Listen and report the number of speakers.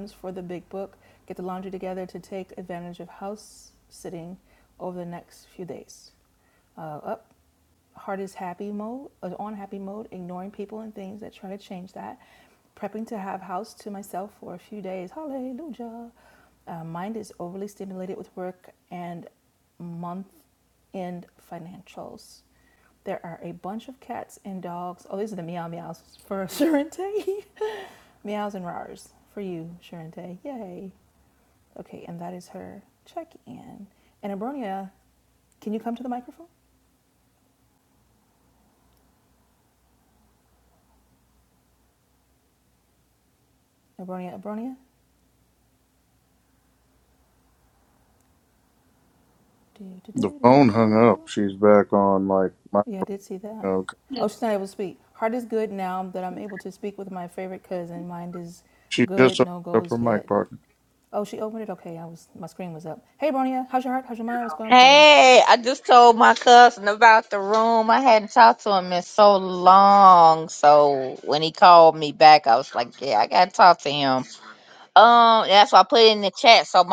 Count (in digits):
3